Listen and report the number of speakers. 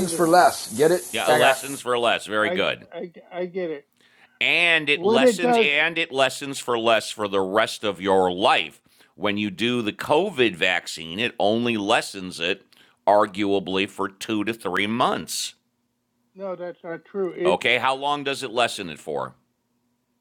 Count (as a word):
three